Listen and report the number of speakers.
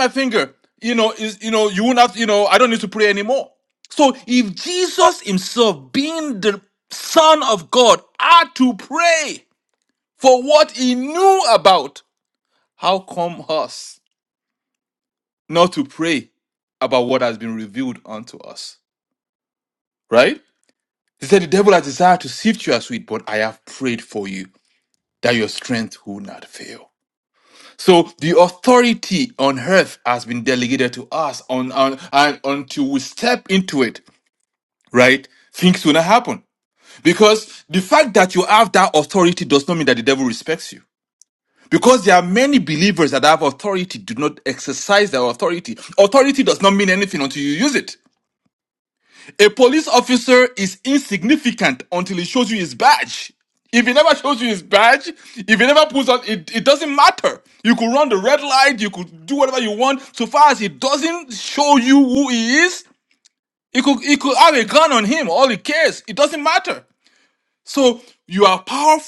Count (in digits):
1